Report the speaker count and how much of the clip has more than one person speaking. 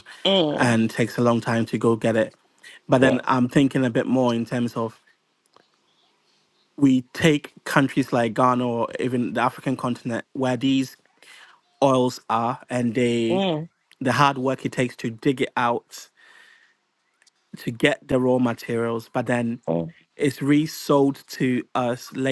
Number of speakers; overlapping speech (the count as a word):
two, about 1%